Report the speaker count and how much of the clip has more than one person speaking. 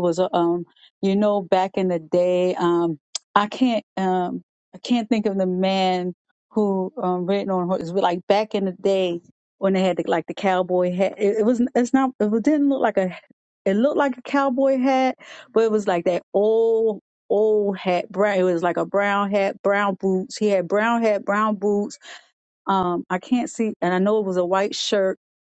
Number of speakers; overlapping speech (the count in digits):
1, no overlap